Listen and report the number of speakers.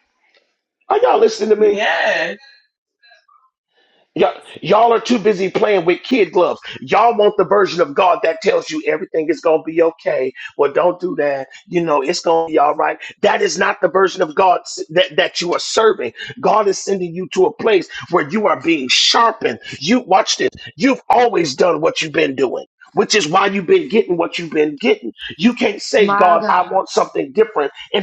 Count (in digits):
2